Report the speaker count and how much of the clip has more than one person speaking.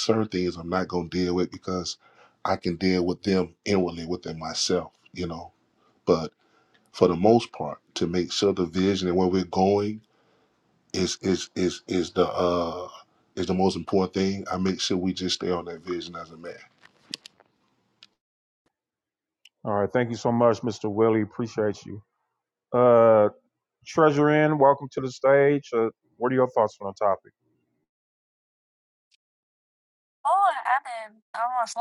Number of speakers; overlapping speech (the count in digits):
3, no overlap